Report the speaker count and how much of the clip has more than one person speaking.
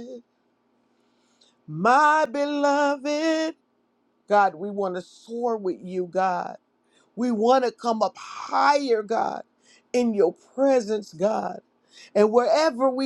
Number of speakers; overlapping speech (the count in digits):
1, no overlap